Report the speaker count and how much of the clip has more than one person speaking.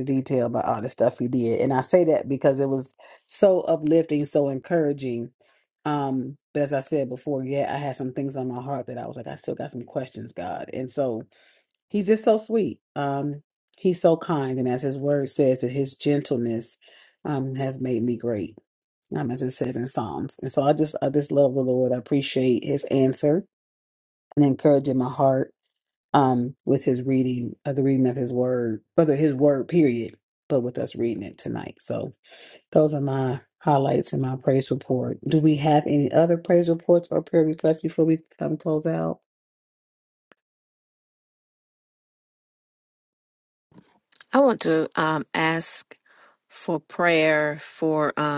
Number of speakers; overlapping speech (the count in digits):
2, no overlap